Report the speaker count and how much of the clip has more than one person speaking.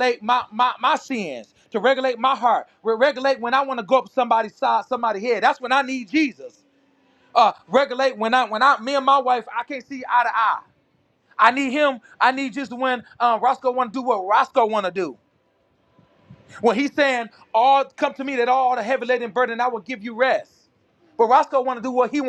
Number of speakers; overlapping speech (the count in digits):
1, no overlap